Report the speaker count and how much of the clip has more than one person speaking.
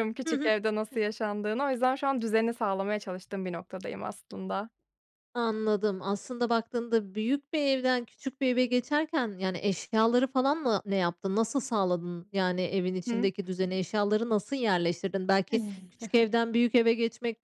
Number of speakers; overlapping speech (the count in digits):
2, about 3%